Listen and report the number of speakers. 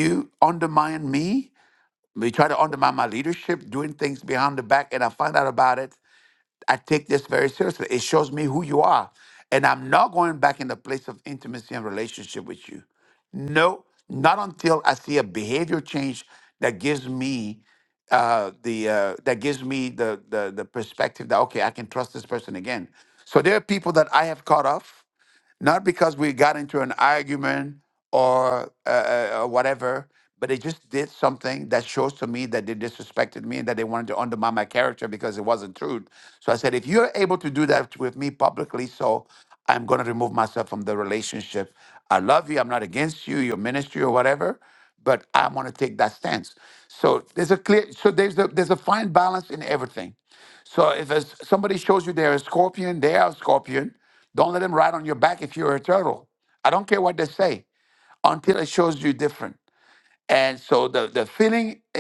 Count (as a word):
one